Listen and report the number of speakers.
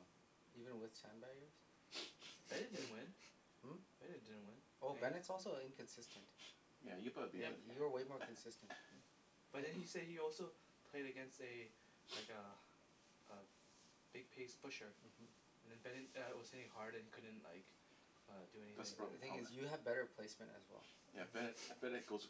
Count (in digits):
3